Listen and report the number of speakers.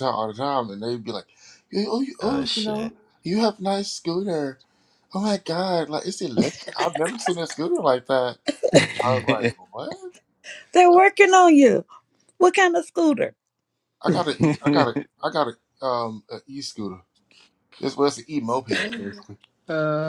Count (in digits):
3